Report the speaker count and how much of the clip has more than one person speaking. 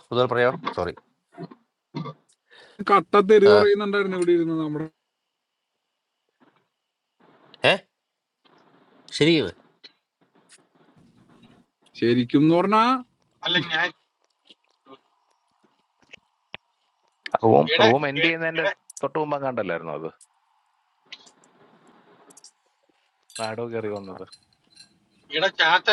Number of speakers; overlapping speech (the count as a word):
four, about 3%